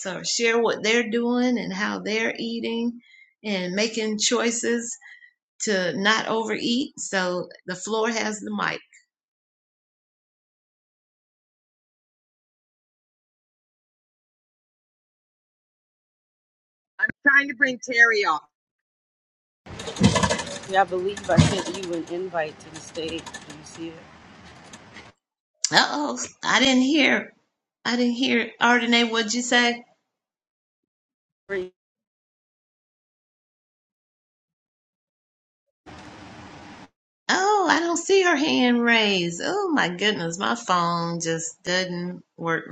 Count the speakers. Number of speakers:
3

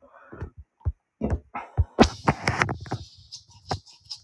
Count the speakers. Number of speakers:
0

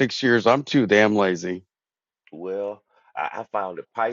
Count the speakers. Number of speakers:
2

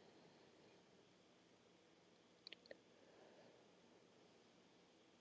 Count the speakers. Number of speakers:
0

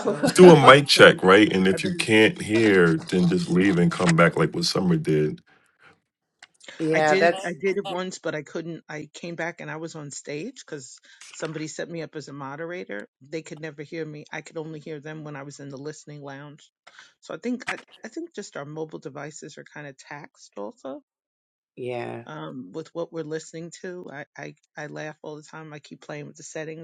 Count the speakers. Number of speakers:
3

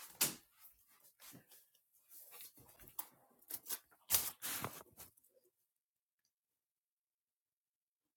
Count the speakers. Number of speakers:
0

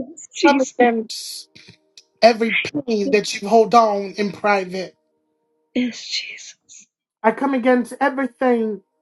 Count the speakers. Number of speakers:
2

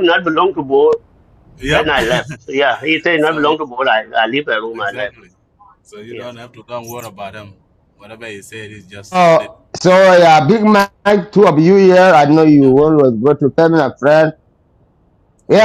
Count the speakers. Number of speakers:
3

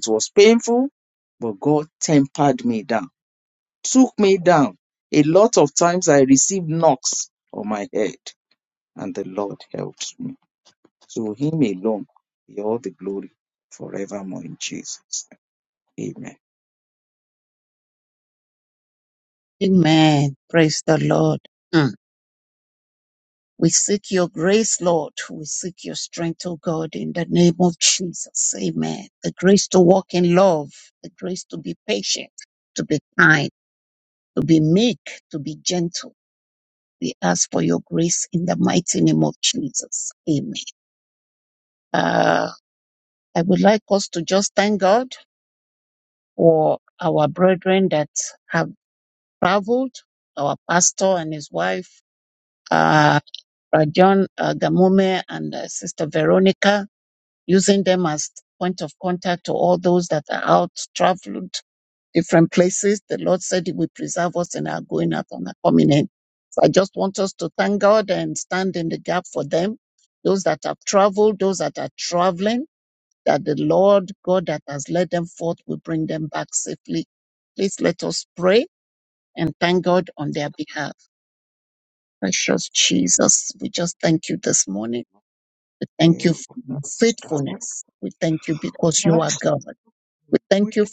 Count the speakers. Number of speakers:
2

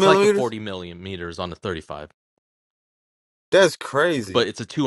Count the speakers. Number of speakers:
2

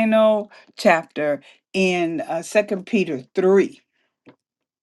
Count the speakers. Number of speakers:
1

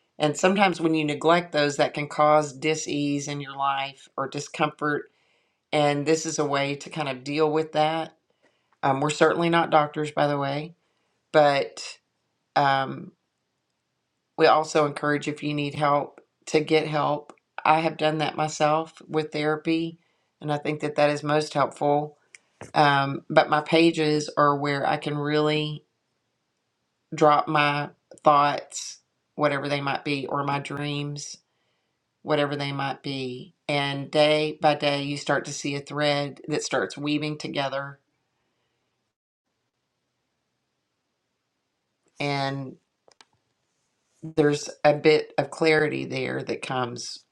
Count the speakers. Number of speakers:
1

